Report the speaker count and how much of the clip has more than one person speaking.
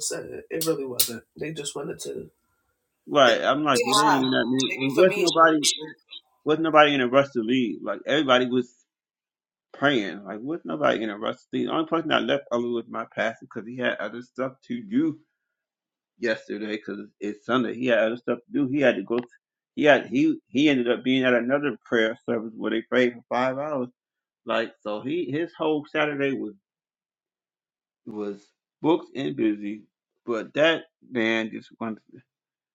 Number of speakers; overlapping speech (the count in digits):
2, about 5%